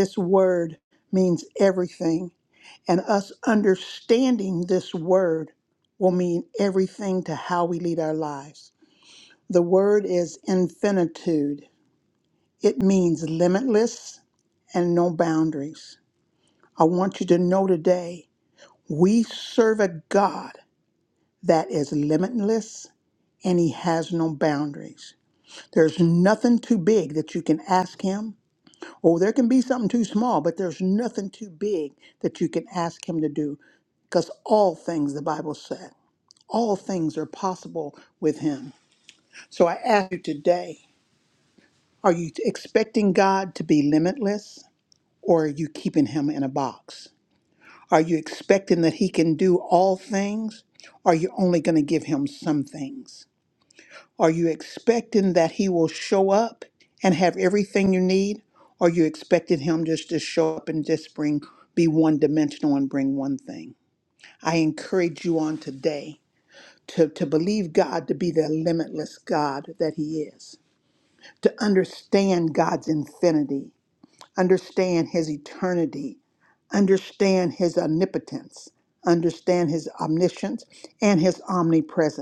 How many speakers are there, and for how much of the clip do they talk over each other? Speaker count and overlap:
one, no overlap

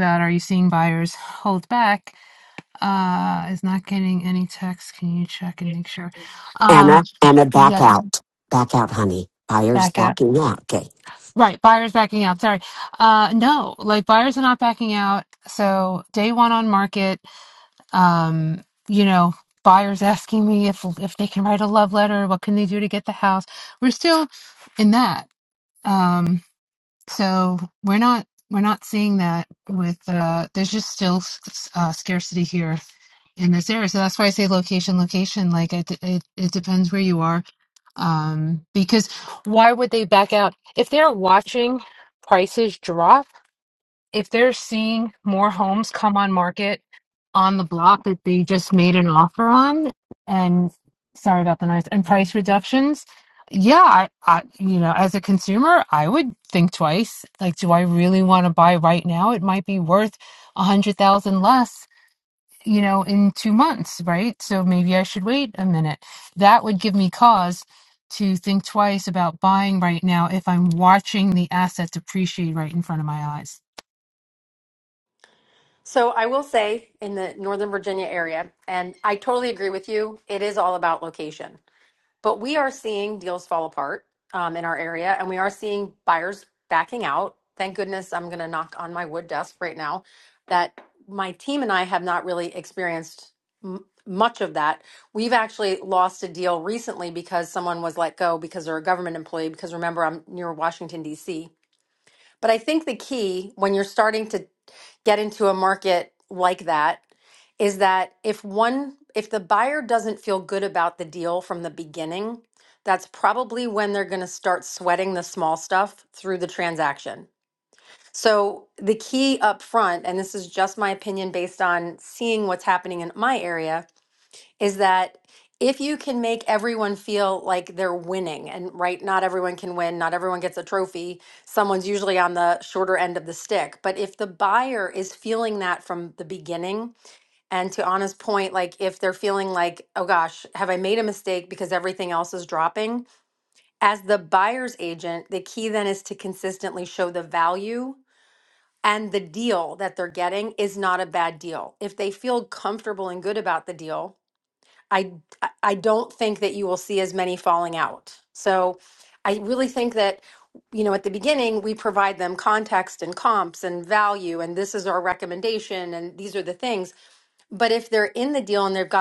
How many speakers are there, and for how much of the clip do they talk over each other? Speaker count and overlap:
three, about 1%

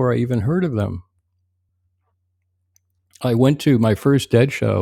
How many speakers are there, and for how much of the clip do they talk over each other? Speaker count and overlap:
one, no overlap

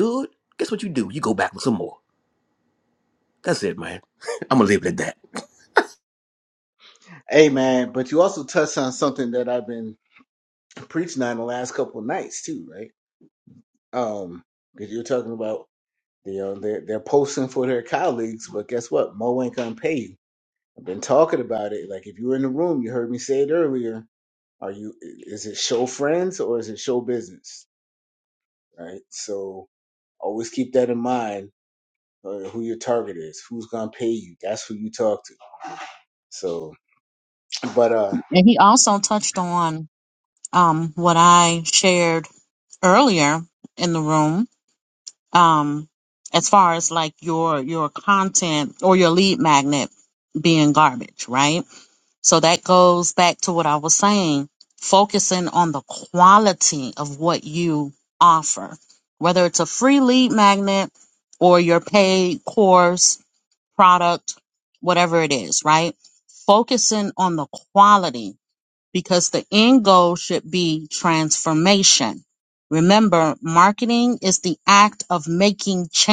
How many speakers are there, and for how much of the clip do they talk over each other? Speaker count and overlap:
three, no overlap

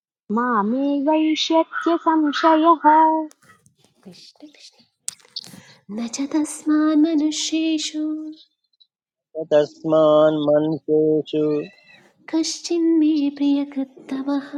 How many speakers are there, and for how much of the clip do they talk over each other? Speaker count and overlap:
three, no overlap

